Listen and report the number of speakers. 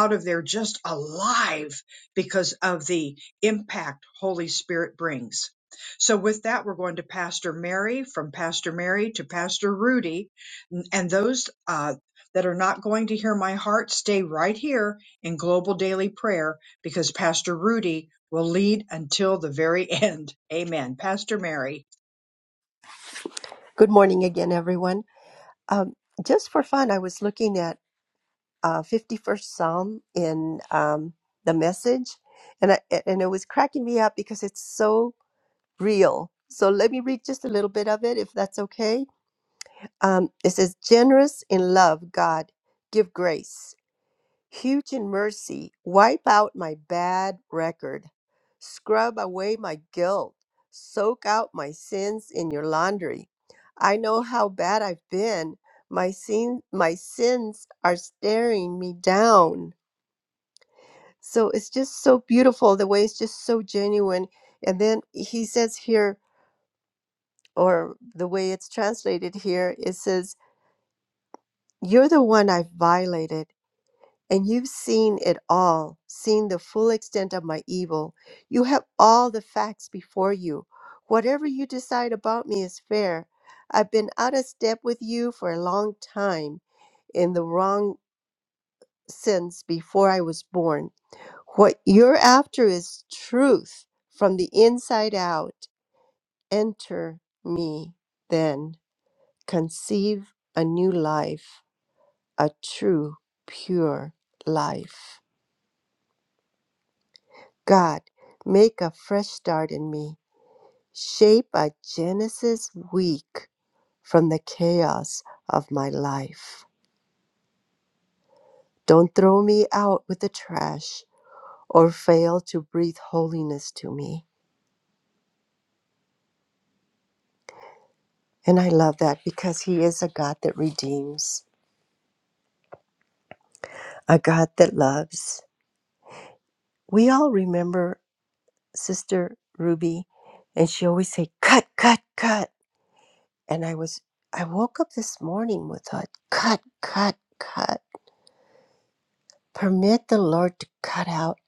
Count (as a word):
two